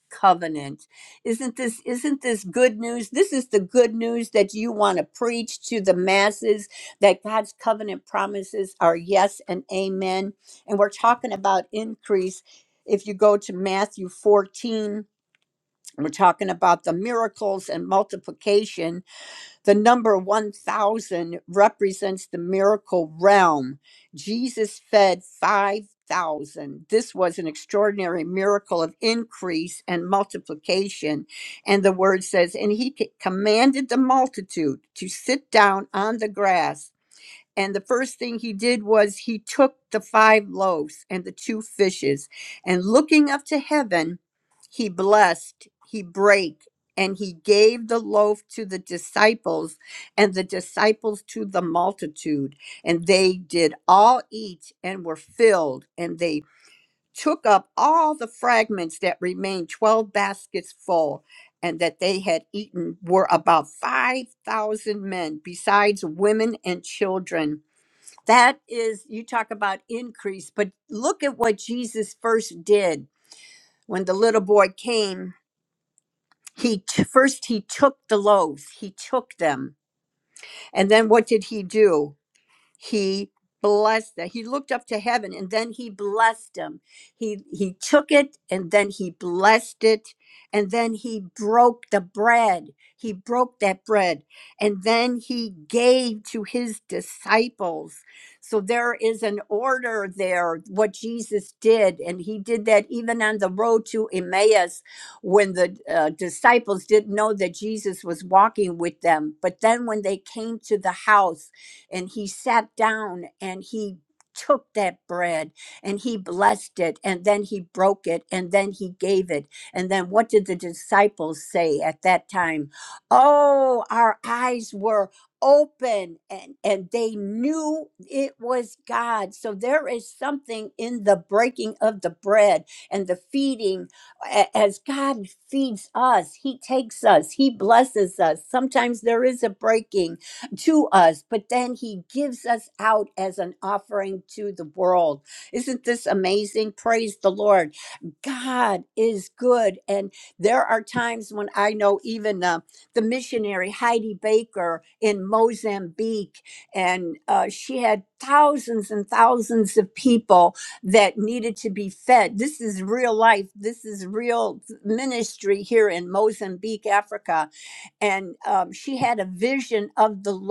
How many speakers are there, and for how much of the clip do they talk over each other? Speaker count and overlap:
1, no overlap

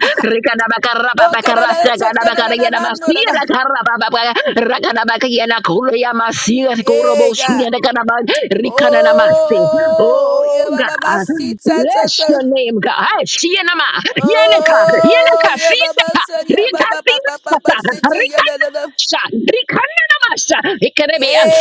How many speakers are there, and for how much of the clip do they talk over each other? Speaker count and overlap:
2, about 42%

